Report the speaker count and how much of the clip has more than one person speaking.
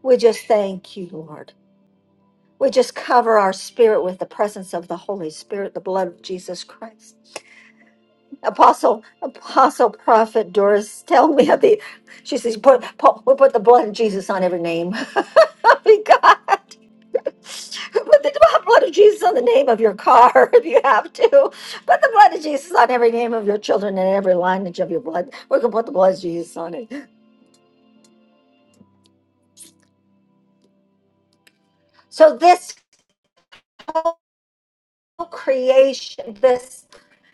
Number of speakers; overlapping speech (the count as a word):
one, no overlap